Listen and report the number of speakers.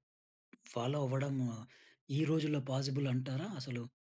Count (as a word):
one